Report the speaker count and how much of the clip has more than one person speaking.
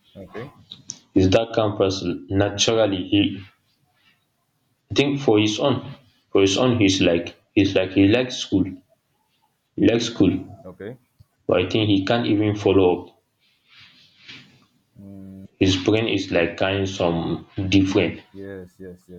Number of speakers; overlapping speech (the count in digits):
2, no overlap